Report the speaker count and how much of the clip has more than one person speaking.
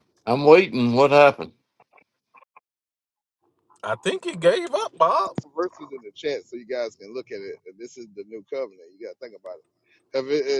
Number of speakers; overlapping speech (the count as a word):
three, no overlap